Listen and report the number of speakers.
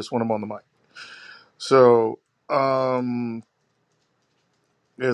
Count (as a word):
one